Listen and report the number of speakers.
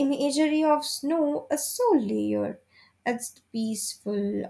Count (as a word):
one